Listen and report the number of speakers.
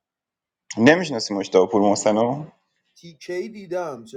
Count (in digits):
2